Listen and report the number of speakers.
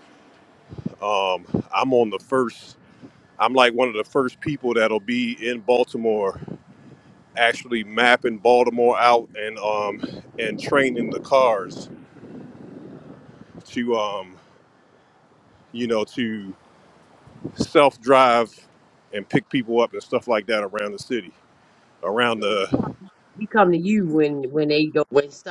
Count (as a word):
two